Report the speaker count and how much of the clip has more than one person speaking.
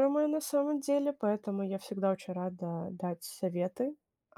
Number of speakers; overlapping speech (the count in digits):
1, no overlap